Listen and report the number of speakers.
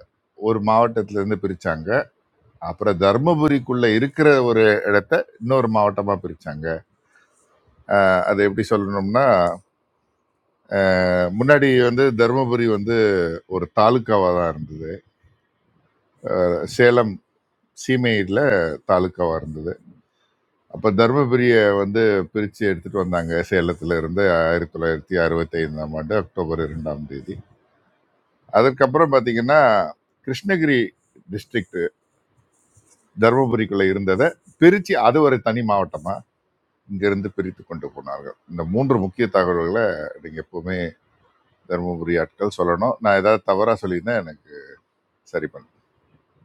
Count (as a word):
one